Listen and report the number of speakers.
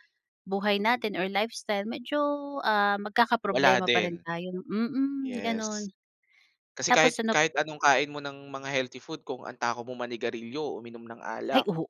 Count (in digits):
2